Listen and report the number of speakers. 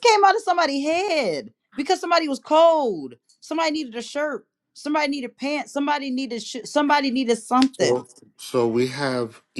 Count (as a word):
two